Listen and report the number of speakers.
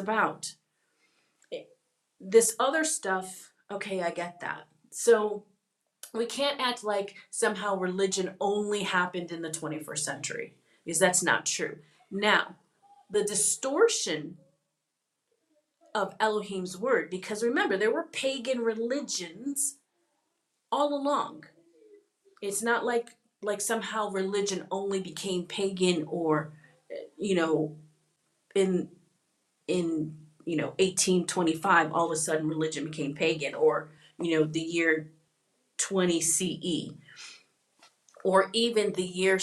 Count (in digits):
1